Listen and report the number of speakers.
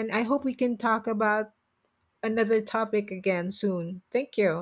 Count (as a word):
one